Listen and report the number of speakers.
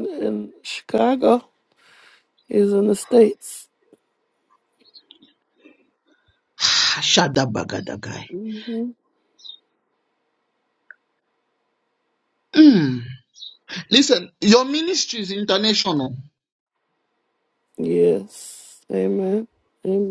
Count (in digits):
2